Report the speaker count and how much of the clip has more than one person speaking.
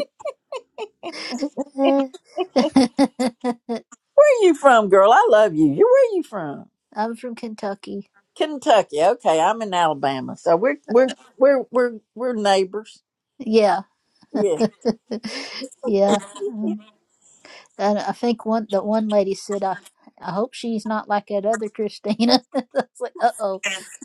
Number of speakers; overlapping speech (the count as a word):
two, no overlap